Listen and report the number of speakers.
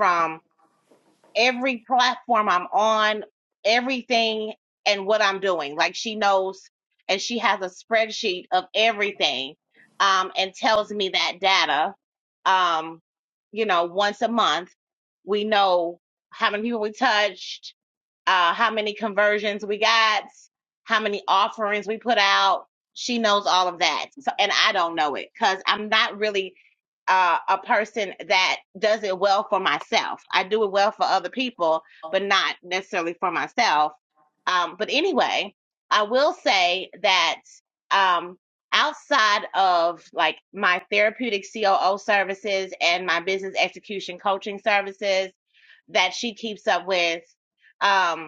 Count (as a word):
one